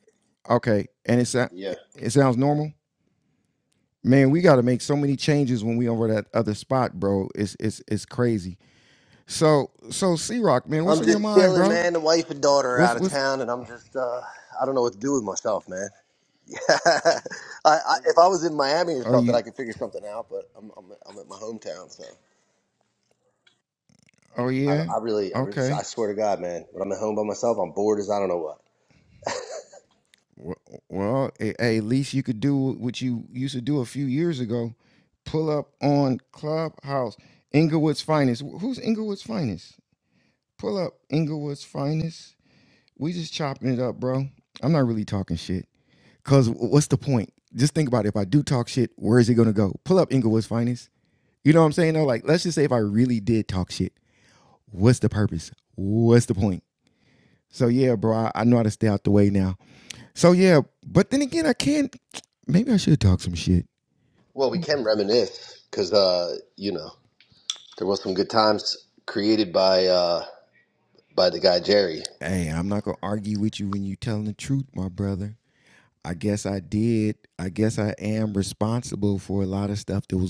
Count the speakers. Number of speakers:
two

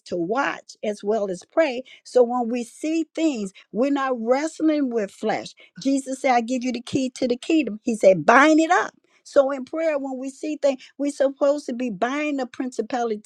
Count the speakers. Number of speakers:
one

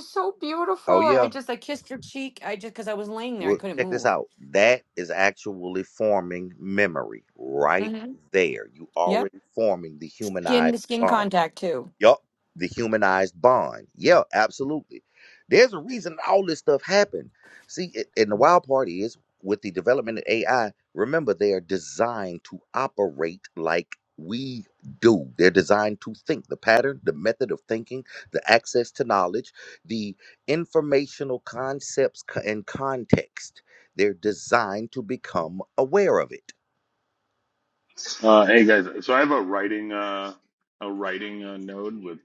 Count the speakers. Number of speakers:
three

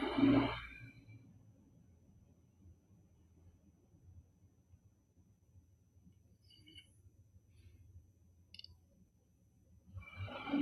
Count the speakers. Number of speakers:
zero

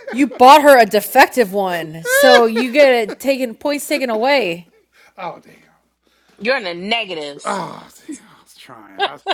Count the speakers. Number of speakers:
three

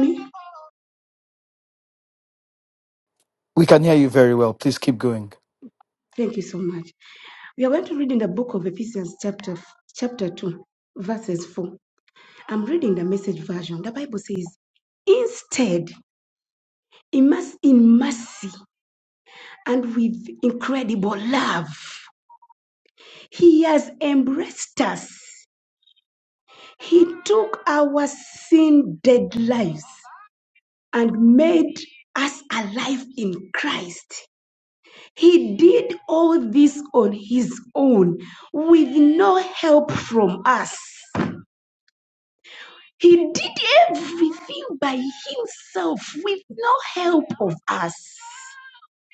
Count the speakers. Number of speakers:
two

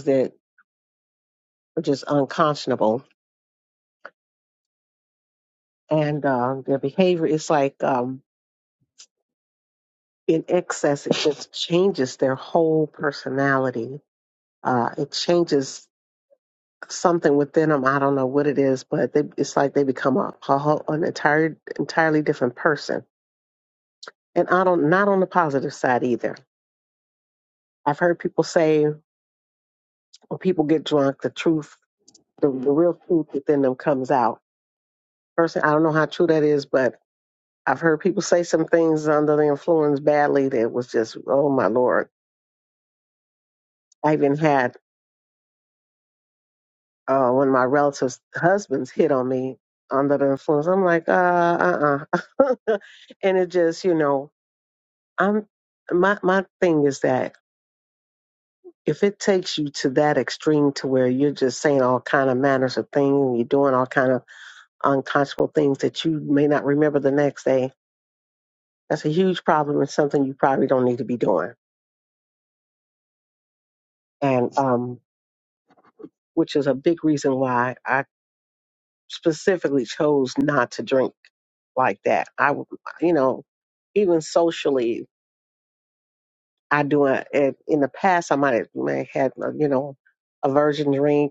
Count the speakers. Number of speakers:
one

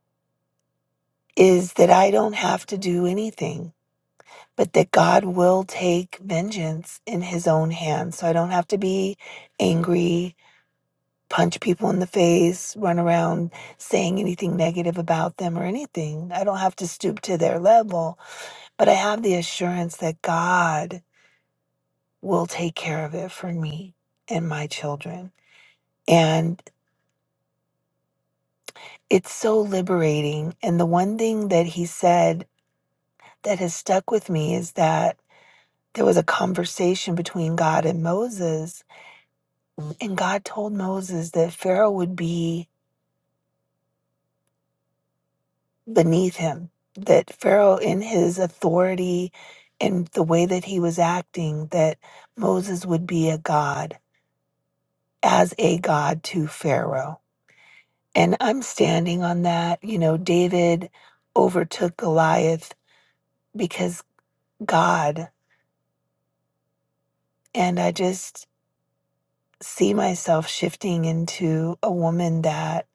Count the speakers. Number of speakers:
one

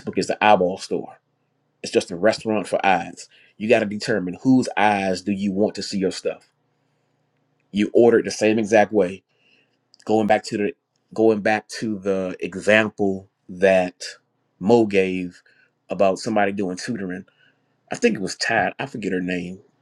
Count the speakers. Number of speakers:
one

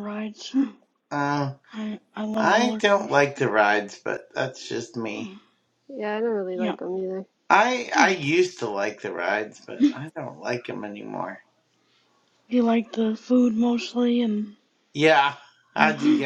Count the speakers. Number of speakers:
three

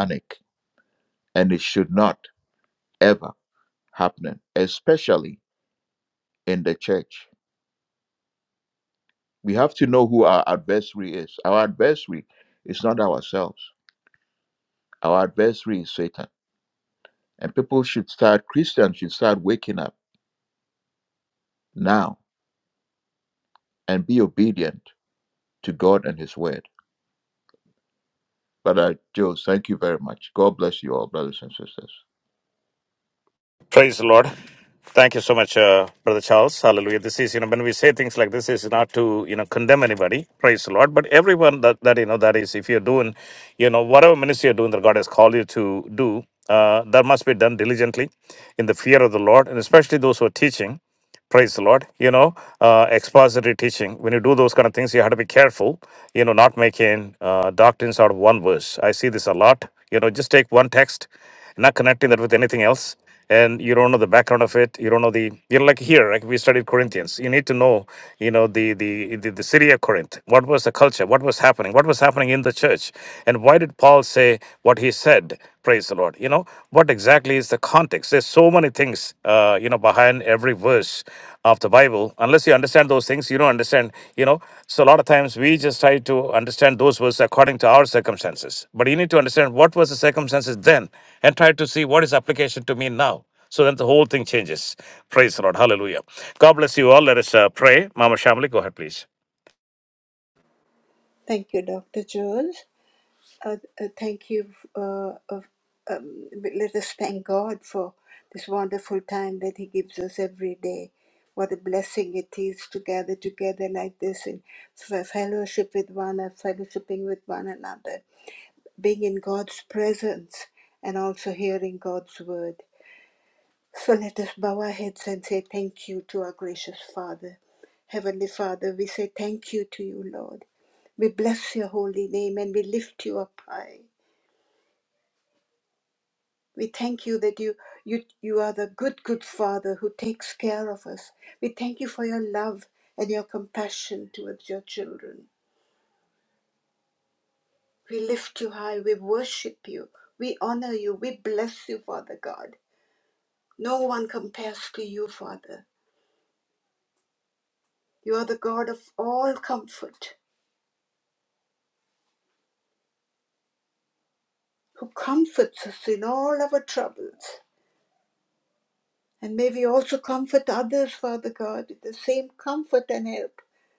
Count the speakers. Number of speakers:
three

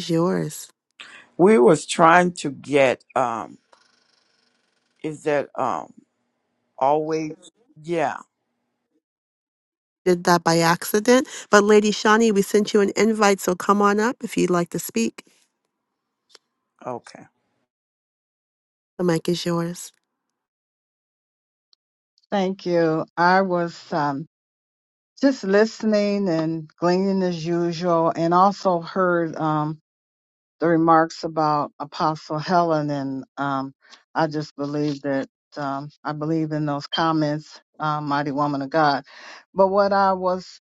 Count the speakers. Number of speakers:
three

